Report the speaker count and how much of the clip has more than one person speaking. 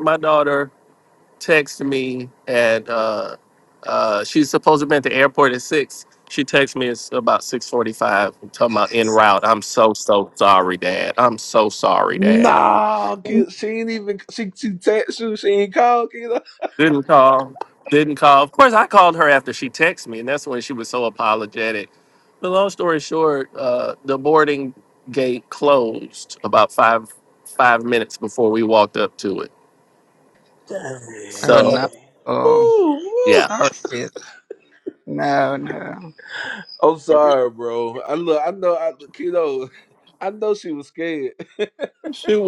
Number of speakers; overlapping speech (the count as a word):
three, about 3%